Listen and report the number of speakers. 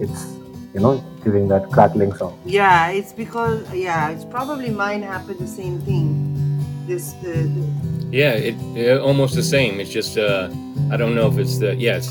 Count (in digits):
3